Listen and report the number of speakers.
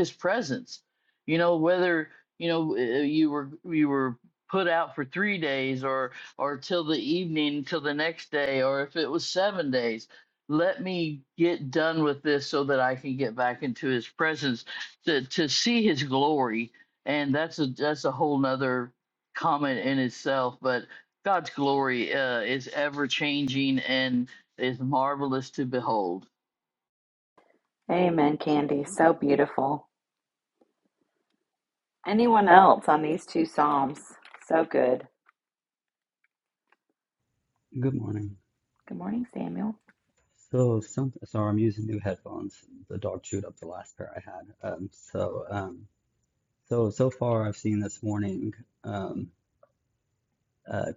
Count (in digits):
3